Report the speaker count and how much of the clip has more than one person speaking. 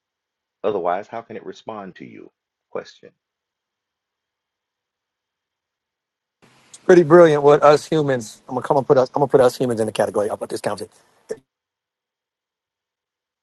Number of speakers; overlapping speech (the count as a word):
two, no overlap